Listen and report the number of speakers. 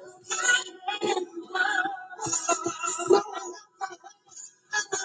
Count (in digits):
0